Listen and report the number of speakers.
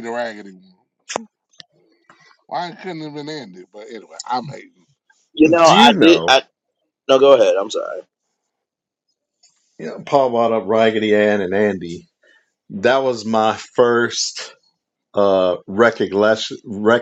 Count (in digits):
3